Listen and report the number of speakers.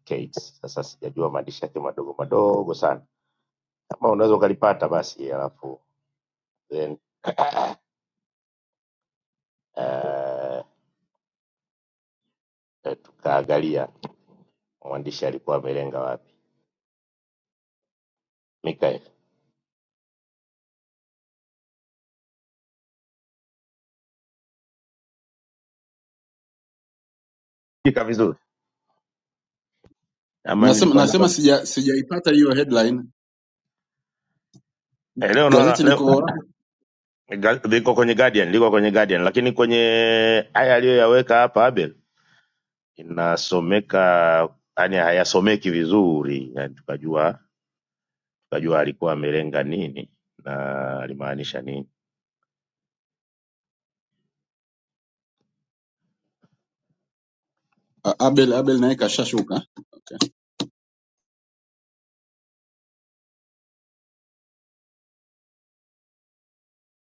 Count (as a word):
two